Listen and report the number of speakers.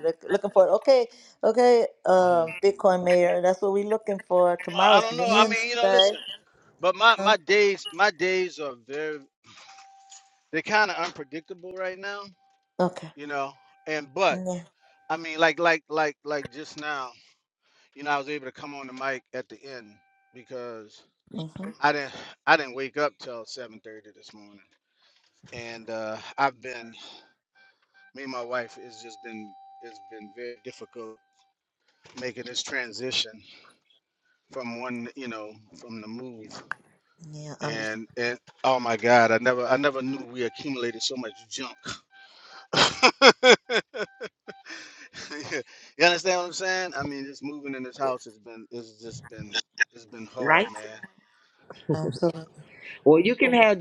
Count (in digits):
3